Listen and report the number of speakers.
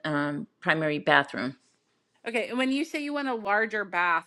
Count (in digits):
2